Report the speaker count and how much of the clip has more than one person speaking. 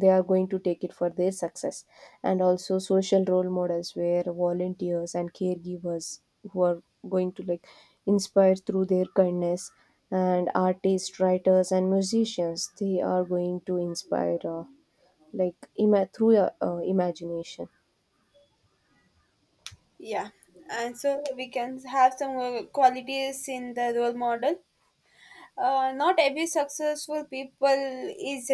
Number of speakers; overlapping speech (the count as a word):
two, no overlap